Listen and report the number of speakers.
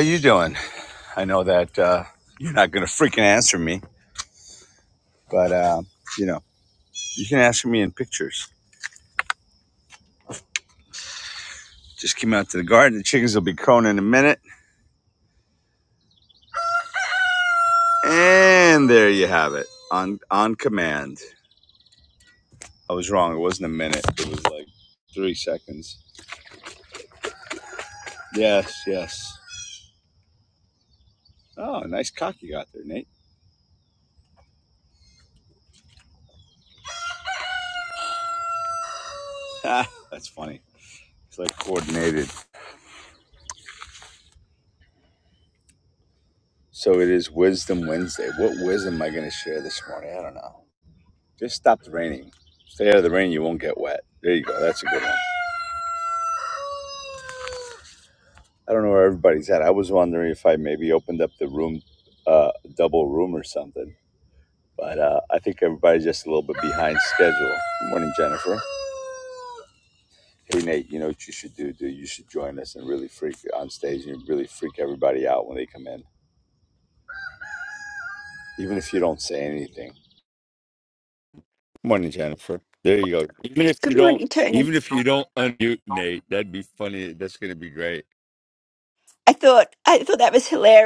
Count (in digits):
2